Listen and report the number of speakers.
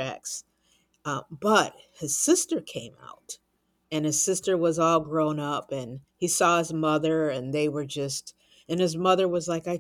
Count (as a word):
one